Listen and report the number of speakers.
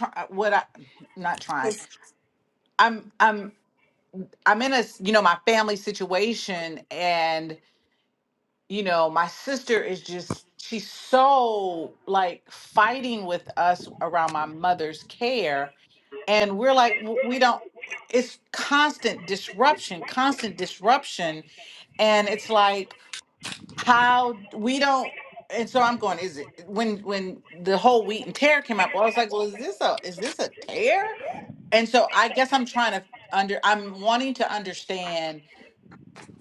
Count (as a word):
one